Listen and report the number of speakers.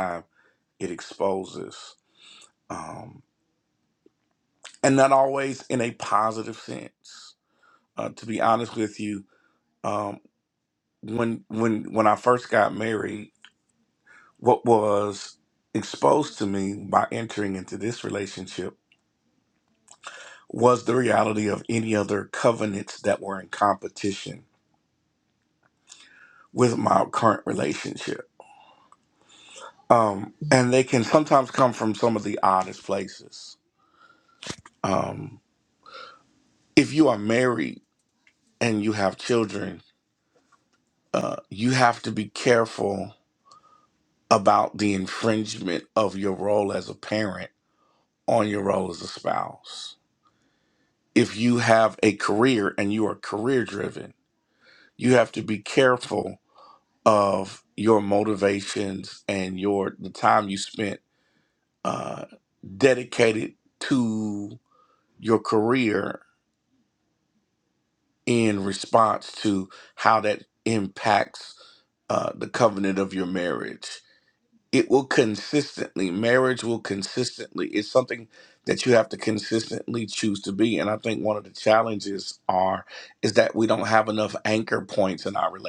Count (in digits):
1